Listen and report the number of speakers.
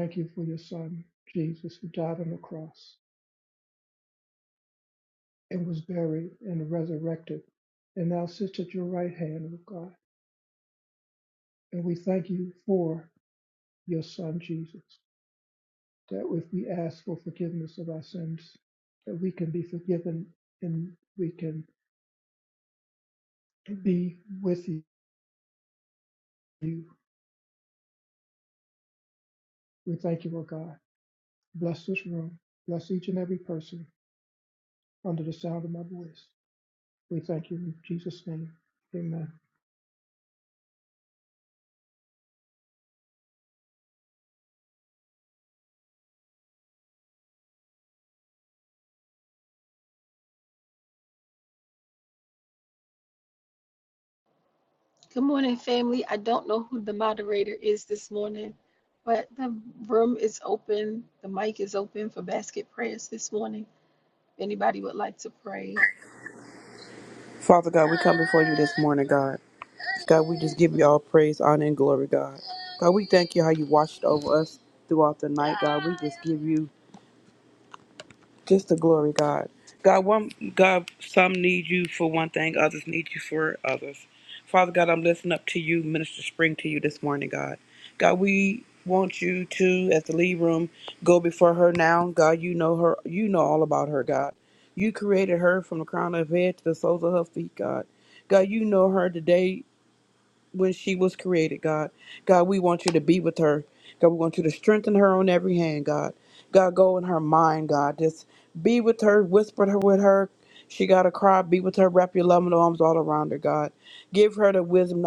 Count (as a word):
three